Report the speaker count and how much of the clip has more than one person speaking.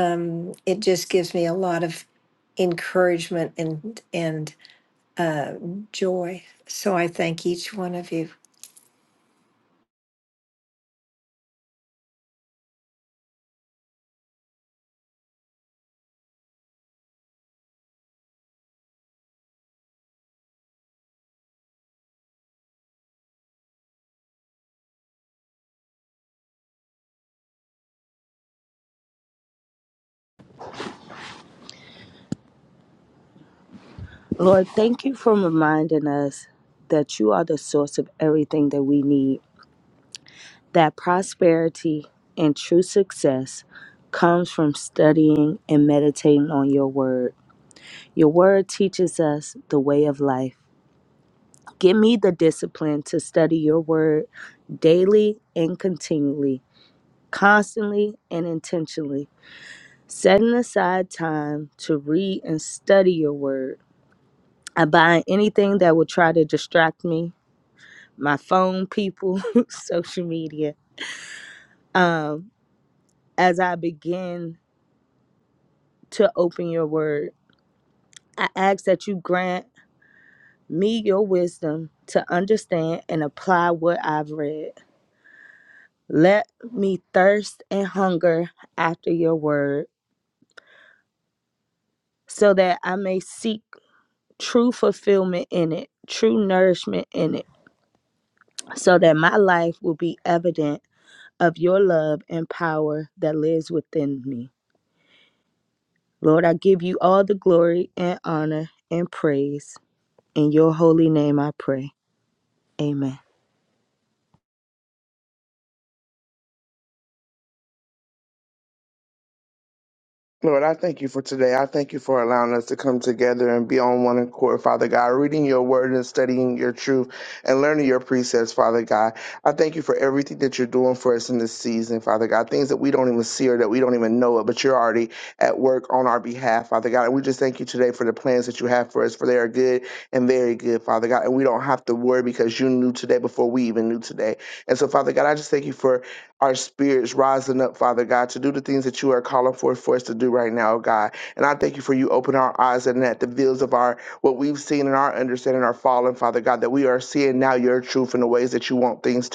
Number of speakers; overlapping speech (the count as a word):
three, no overlap